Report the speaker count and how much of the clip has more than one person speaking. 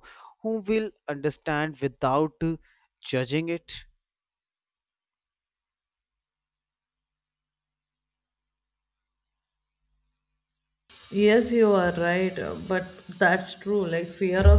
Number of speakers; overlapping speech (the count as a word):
two, no overlap